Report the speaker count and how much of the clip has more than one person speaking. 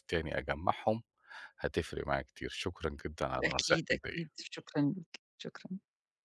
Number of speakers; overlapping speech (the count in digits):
2, about 13%